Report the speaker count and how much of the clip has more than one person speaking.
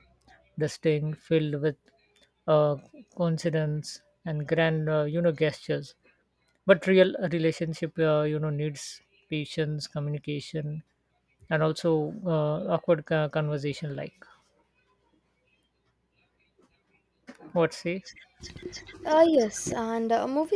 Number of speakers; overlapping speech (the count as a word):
two, no overlap